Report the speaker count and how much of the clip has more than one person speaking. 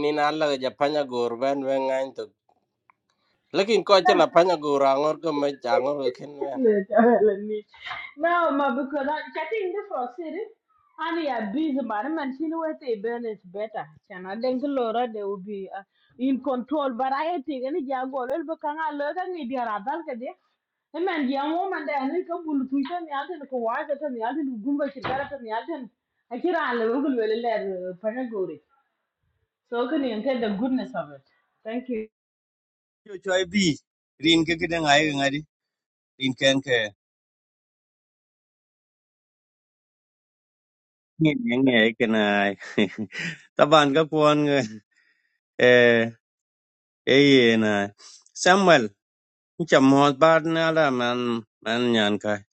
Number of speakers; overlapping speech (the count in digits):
3, under 1%